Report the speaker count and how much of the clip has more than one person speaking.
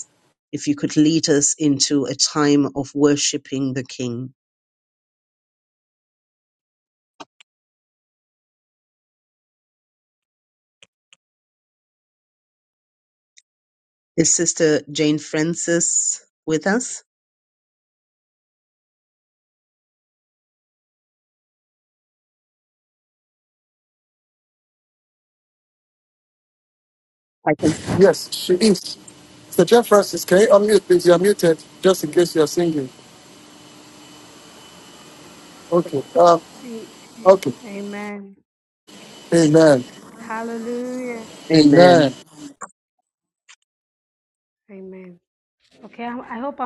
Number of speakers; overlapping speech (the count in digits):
3, about 2%